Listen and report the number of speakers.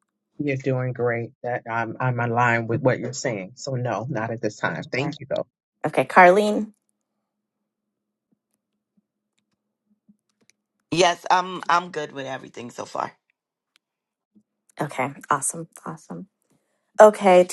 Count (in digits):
3